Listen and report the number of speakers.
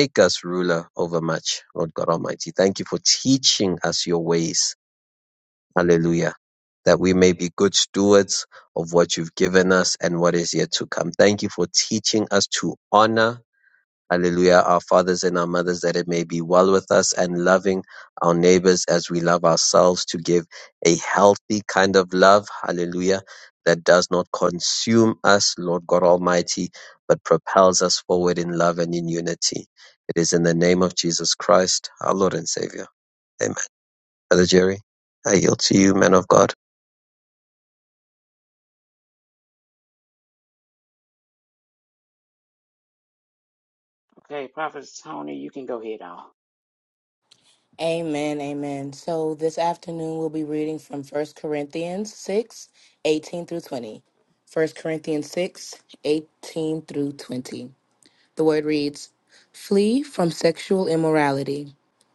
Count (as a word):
three